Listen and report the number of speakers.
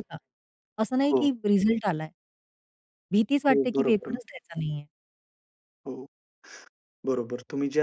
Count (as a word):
two